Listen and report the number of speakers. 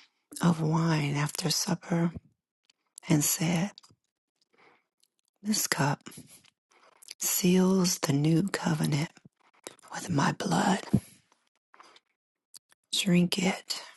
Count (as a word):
one